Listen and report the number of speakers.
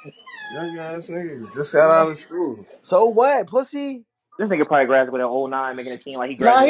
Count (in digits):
3